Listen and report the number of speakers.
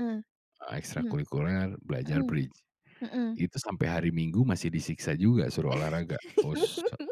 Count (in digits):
2